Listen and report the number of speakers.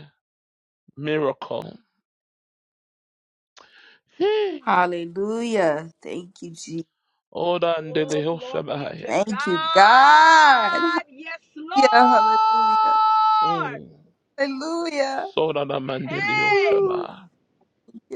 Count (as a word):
three